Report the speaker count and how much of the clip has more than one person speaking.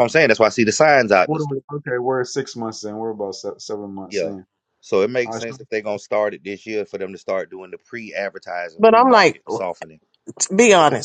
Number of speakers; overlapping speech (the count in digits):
3, about 10%